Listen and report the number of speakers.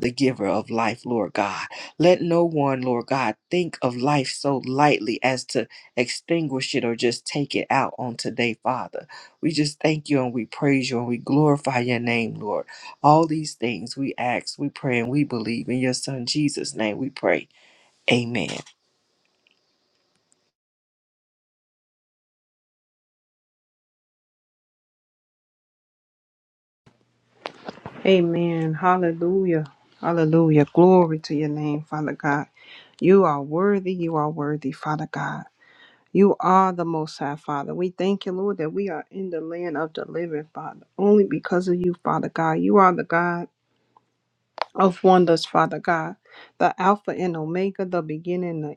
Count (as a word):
two